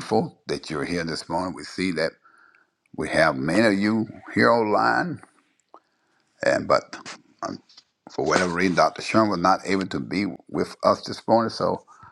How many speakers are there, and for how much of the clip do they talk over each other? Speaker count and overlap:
one, no overlap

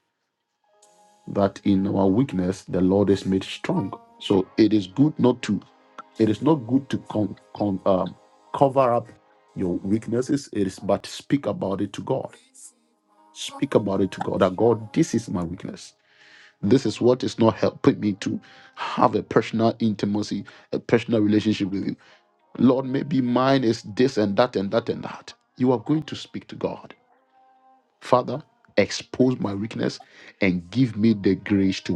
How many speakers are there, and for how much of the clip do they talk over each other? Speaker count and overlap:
one, no overlap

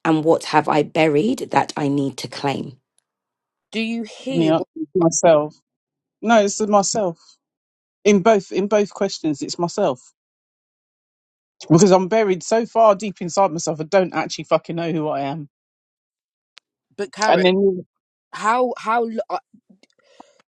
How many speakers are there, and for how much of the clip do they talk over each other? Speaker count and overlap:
three, about 3%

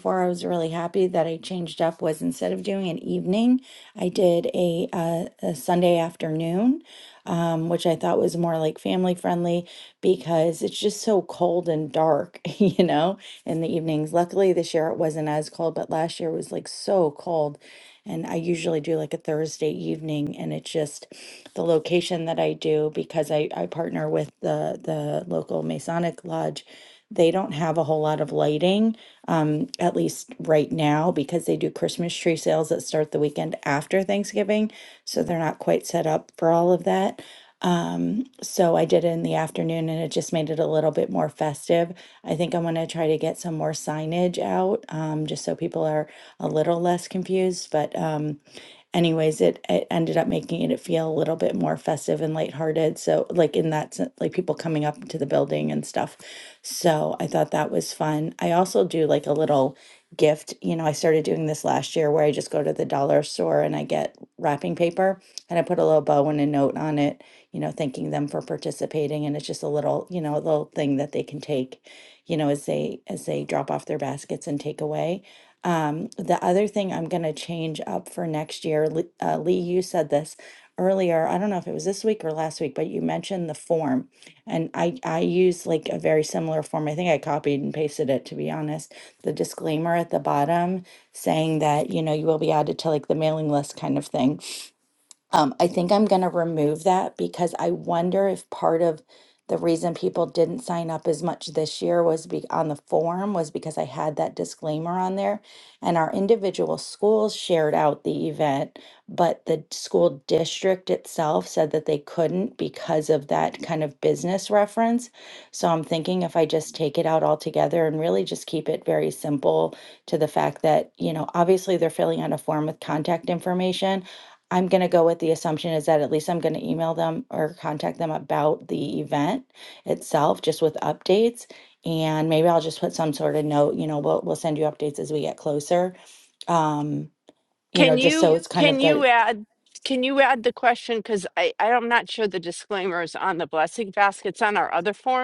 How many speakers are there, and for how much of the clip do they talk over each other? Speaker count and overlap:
two, about 1%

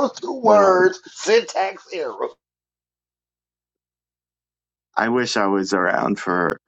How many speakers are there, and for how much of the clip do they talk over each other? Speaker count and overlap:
two, about 7%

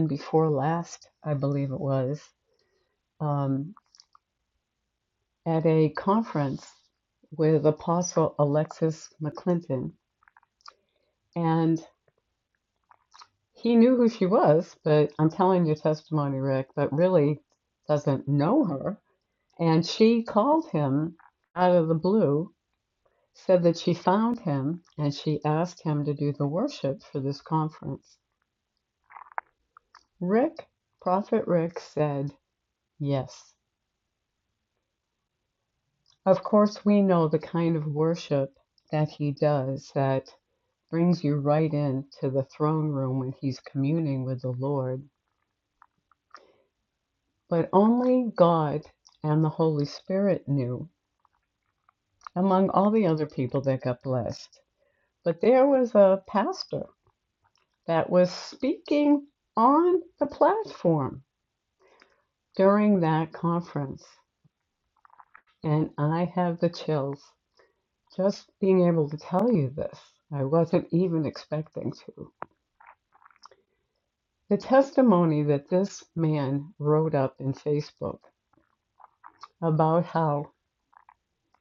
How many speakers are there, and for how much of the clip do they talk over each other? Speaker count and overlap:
one, no overlap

